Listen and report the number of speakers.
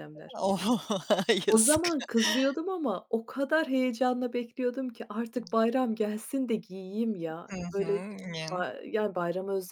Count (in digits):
2